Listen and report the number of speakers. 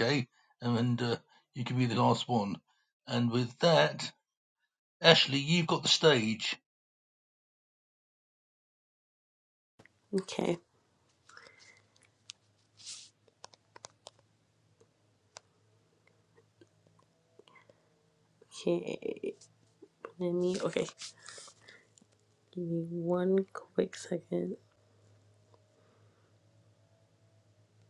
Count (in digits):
2